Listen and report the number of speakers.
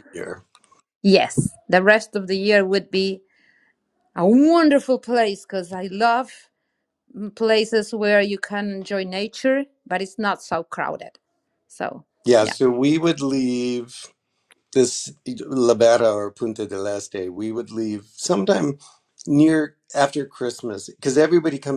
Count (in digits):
2